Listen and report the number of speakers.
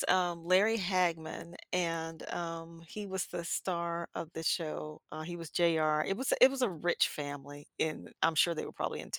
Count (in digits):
1